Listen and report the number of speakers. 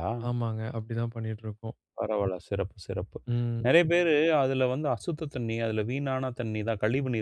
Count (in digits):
2